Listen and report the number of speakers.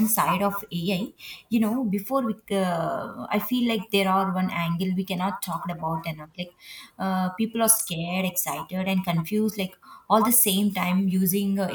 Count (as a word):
one